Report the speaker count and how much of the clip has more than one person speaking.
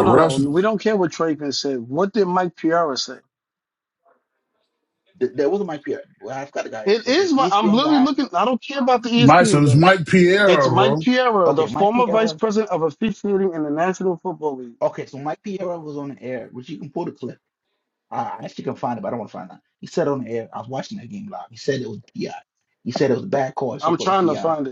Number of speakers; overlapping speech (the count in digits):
3, about 19%